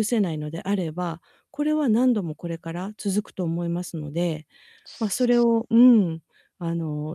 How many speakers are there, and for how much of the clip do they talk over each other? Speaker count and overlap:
one, no overlap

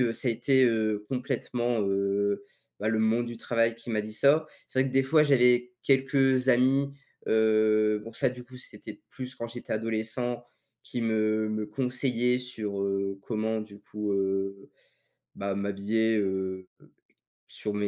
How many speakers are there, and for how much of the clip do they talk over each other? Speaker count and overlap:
one, no overlap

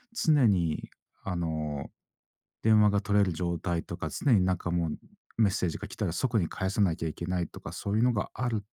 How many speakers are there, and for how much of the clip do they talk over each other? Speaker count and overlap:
one, no overlap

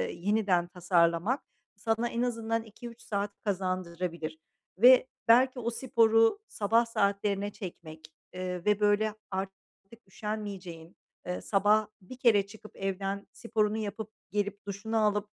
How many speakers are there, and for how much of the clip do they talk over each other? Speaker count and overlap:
one, no overlap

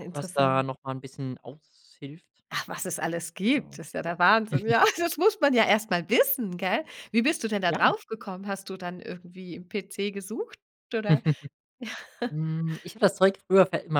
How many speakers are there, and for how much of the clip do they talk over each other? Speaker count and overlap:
two, about 6%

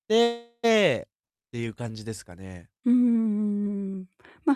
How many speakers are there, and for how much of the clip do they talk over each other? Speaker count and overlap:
two, no overlap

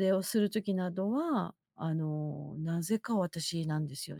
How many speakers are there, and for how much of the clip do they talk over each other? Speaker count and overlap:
one, no overlap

